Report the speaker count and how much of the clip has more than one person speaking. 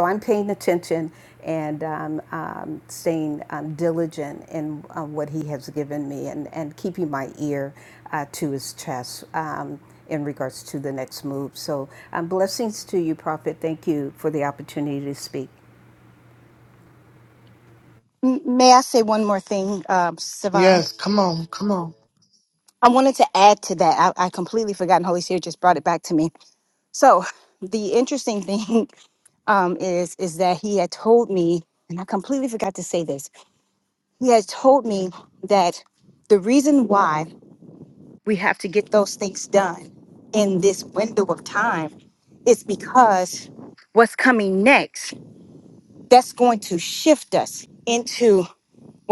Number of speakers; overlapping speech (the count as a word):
three, about 1%